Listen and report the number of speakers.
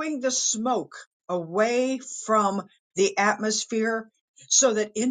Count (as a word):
one